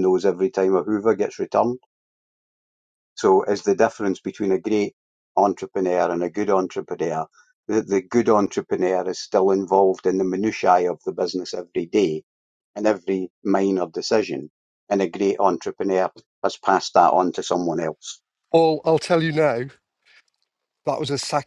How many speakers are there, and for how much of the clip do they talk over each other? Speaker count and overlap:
two, no overlap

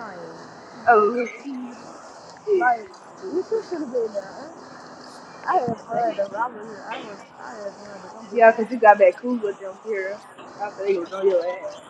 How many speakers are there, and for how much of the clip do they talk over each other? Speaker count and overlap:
two, about 3%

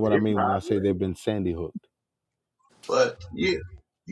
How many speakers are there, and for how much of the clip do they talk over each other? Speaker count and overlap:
two, about 23%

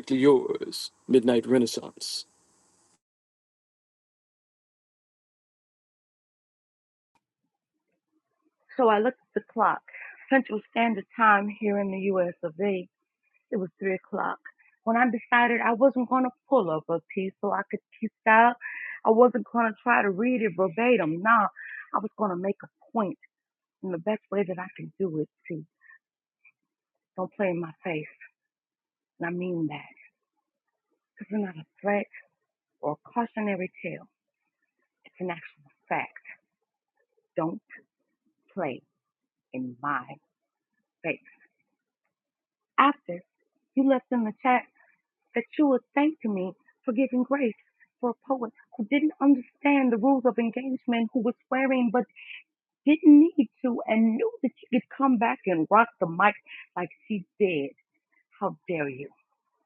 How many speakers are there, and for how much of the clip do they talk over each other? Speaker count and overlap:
two, no overlap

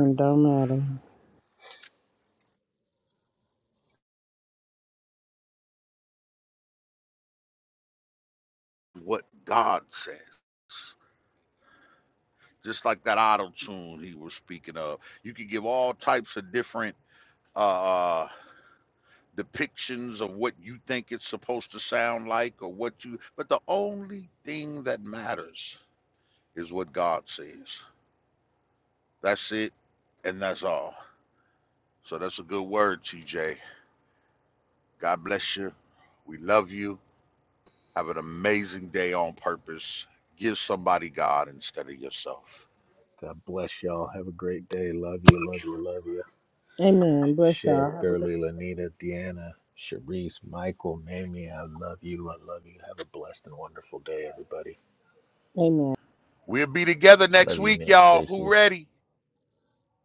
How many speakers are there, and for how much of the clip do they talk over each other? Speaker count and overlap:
three, about 4%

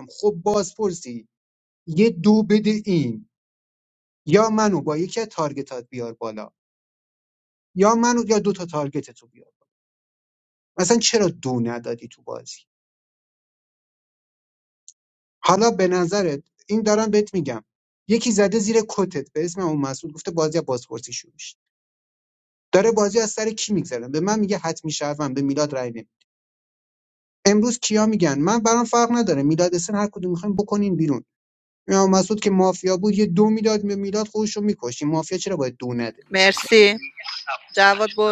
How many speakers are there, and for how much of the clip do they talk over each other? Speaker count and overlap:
two, no overlap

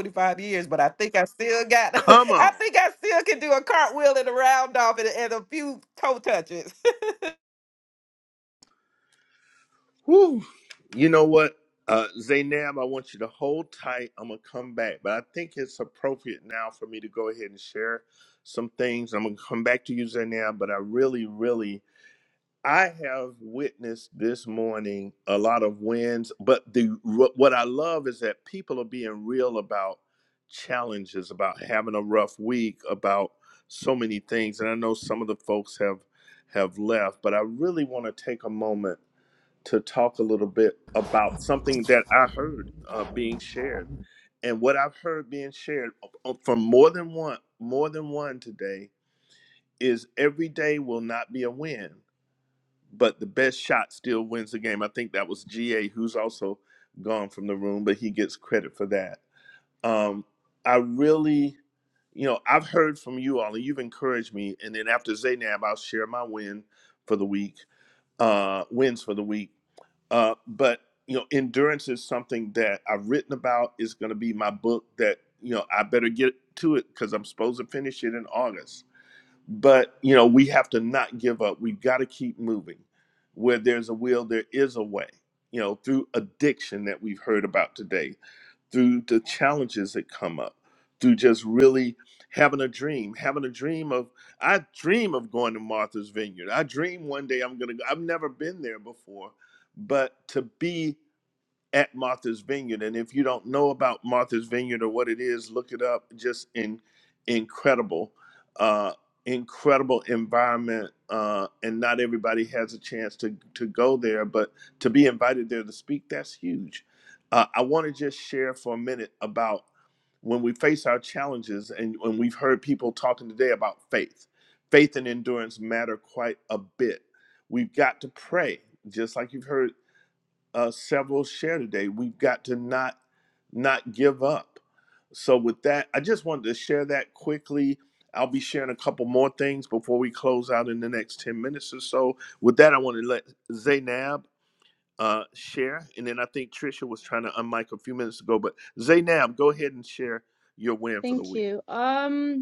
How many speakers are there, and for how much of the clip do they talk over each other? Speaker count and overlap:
three, under 1%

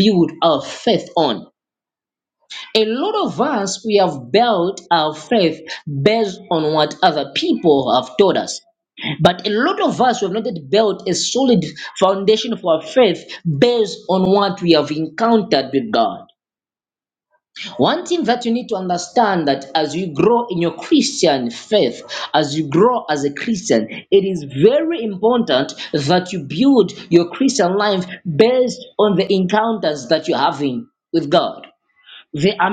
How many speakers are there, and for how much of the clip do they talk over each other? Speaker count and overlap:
one, no overlap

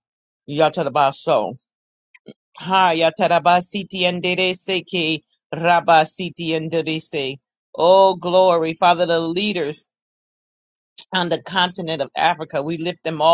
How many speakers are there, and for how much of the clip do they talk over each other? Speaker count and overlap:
one, no overlap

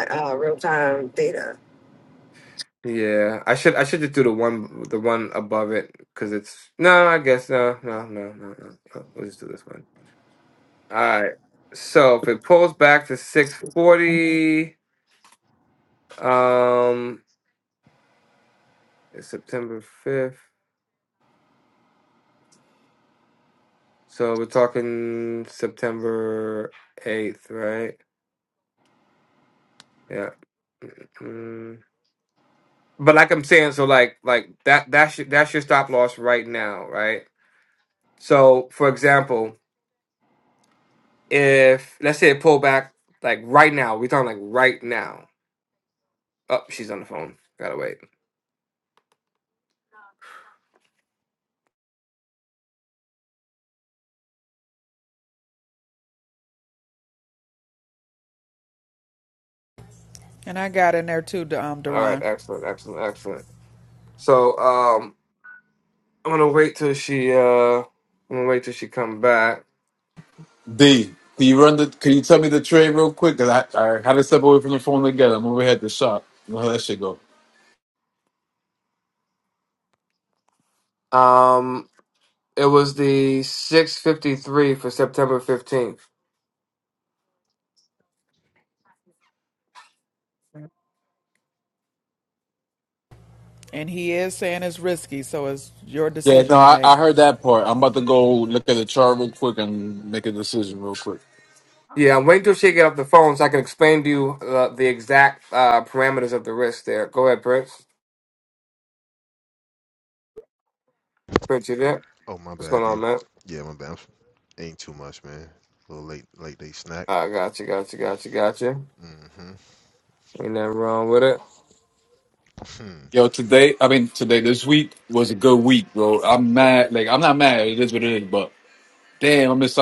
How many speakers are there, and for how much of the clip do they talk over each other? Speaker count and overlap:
five, about 1%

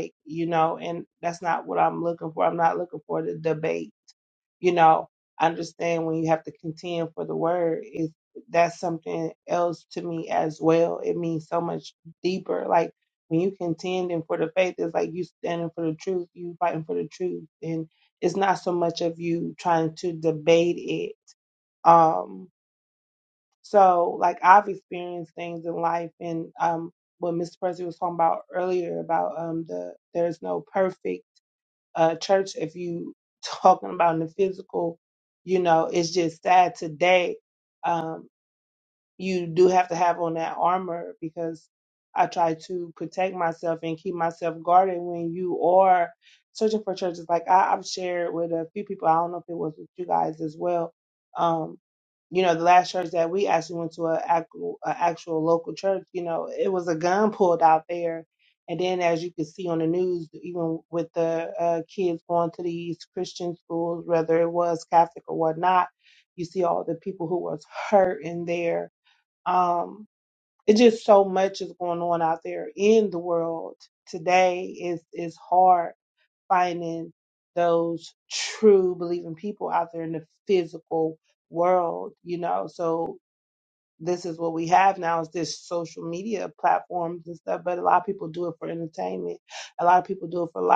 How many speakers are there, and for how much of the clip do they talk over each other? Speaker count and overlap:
one, no overlap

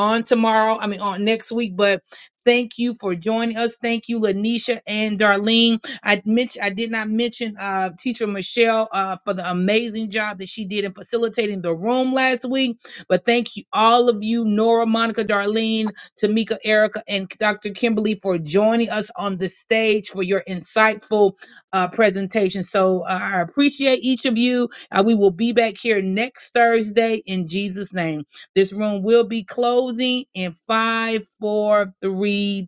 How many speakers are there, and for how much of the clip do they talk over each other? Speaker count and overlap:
one, no overlap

